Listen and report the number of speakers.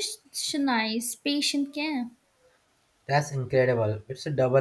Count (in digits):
2